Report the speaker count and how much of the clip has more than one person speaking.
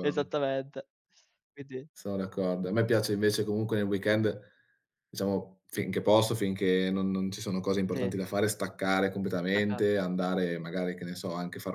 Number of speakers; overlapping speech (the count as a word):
two, about 3%